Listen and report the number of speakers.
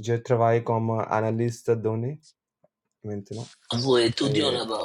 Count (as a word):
two